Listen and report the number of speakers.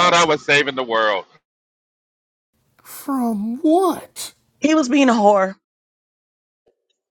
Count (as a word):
three